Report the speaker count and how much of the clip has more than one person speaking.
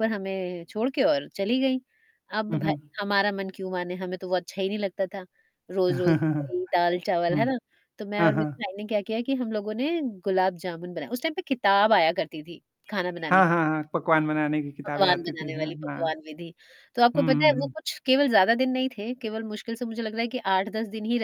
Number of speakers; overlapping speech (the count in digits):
2, about 13%